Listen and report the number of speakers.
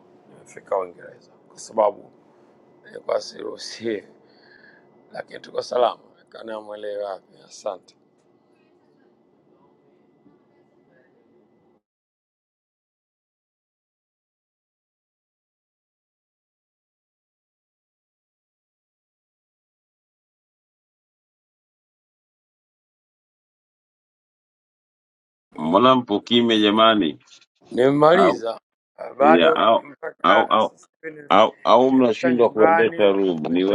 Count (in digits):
2